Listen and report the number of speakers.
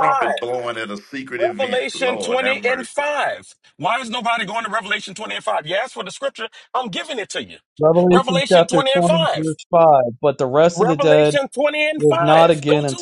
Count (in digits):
3